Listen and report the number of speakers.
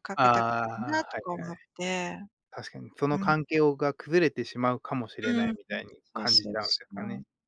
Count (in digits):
2